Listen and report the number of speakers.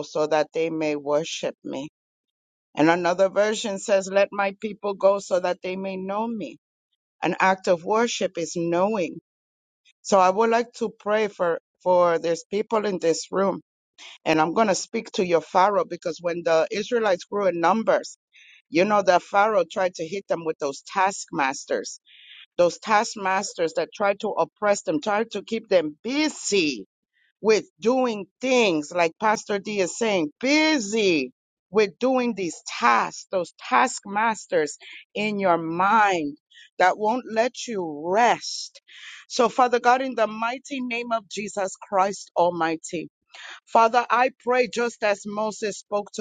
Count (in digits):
1